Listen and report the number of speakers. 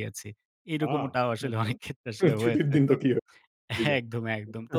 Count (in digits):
2